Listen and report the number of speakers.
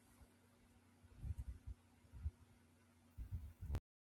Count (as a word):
zero